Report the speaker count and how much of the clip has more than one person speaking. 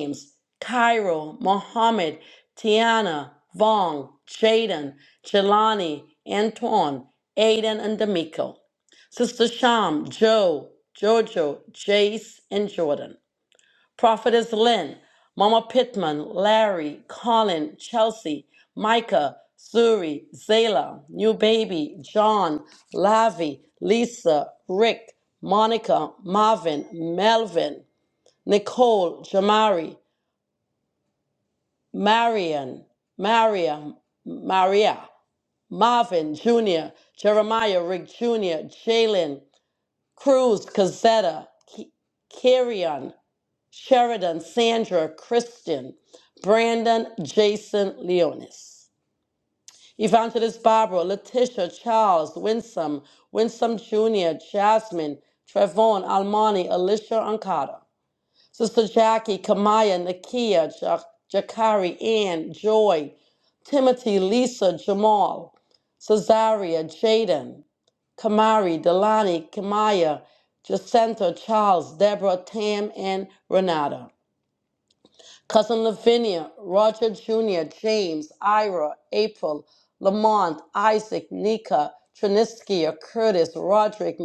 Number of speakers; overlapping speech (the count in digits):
1, no overlap